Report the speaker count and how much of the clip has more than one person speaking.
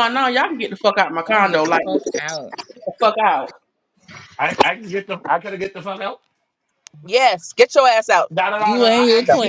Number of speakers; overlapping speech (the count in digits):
4, about 16%